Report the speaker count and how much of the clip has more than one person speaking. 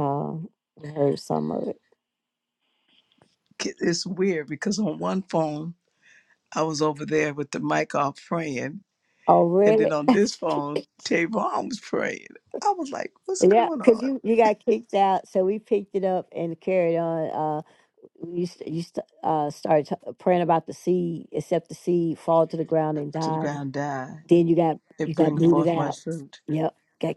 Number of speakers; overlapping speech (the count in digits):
2, about 8%